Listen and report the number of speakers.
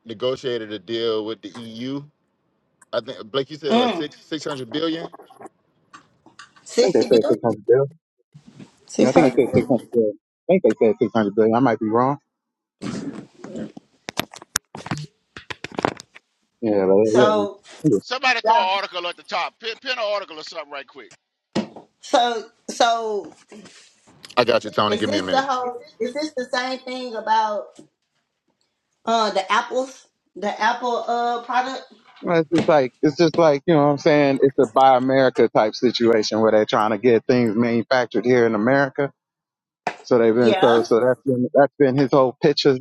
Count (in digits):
4